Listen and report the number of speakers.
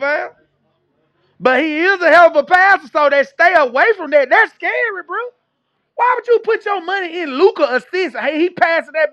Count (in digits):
1